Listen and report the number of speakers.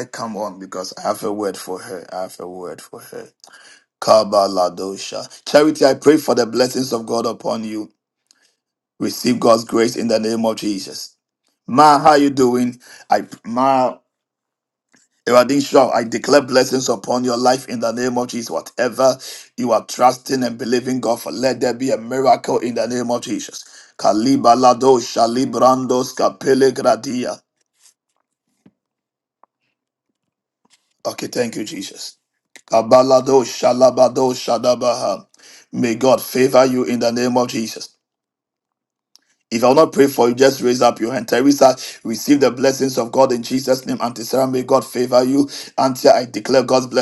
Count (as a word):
one